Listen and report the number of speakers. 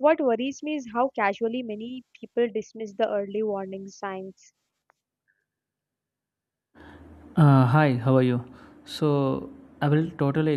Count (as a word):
two